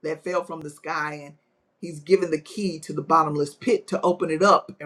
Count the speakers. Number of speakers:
one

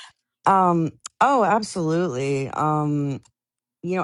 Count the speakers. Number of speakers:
one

